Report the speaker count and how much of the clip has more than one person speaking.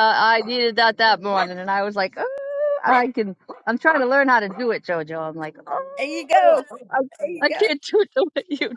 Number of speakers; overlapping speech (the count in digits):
2, about 9%